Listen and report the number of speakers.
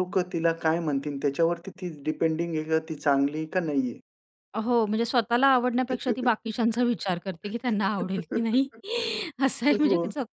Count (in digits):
2